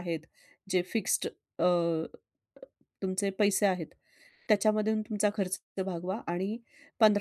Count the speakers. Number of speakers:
one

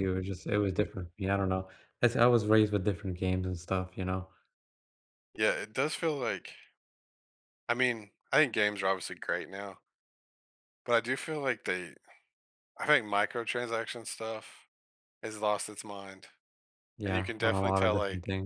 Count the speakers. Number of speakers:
two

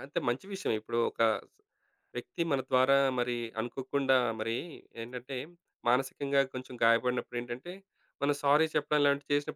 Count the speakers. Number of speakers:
one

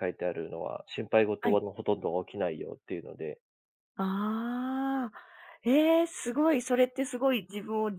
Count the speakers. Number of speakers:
two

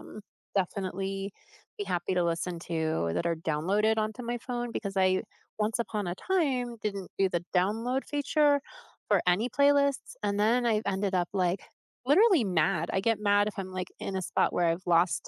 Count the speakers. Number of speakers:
one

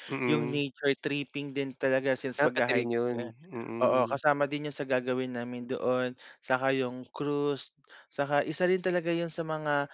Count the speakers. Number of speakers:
two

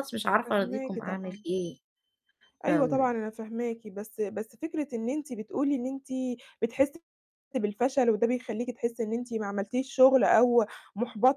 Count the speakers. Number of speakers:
two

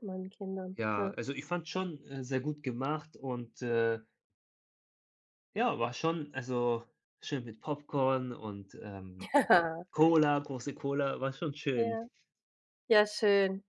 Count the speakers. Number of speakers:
two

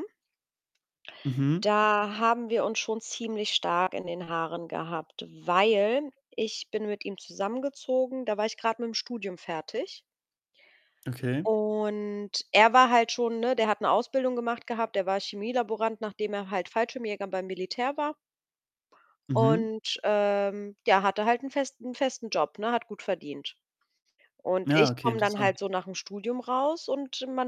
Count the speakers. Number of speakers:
two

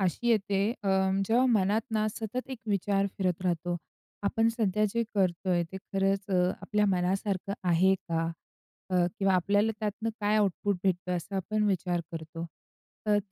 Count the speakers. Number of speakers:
one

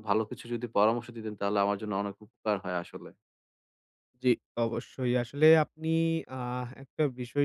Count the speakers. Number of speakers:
two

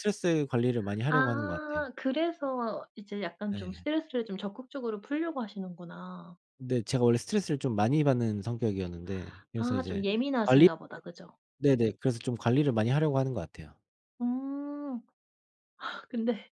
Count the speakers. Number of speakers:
two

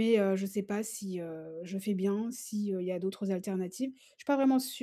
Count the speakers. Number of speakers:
one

